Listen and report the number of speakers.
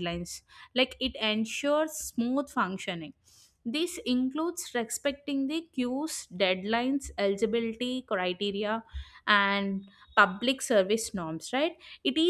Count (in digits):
1